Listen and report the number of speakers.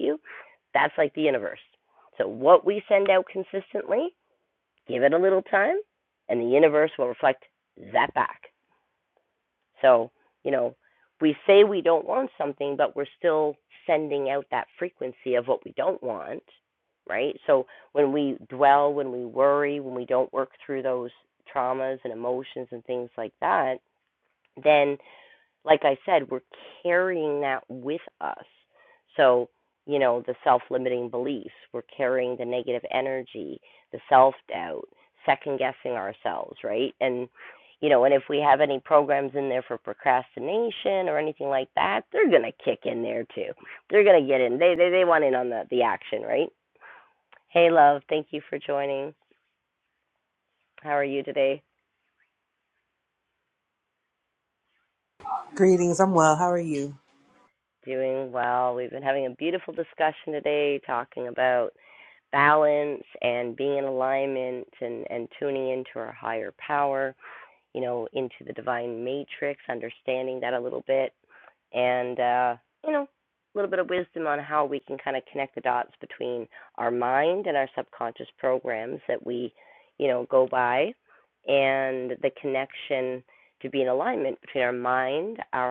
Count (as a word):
two